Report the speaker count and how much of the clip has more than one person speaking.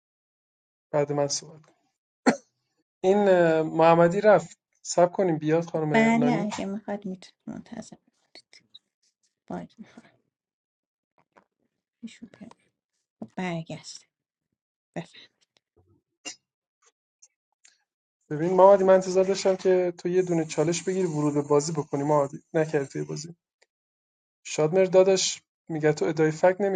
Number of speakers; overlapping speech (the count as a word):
two, about 2%